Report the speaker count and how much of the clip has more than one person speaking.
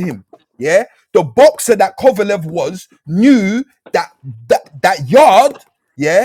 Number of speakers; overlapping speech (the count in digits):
1, no overlap